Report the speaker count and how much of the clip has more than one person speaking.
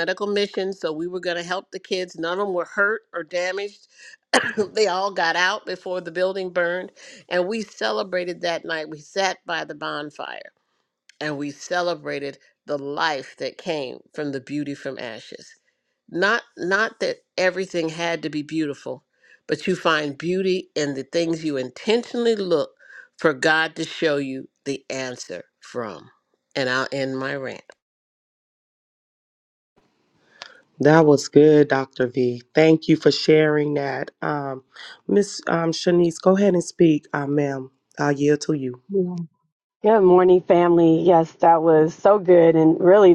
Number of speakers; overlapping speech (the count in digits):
3, no overlap